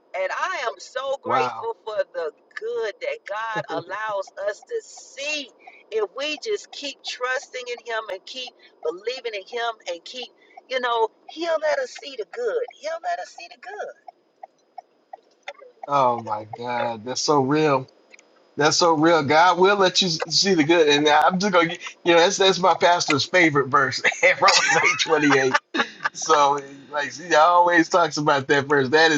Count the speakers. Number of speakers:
2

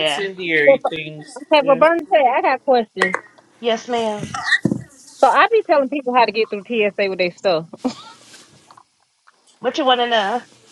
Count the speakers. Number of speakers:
3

